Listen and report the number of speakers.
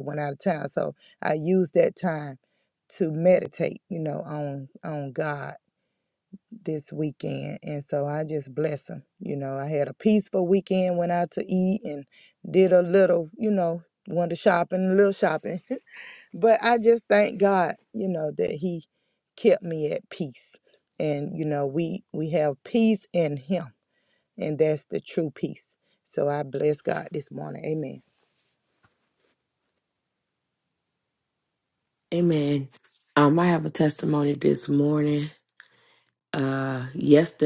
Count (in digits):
2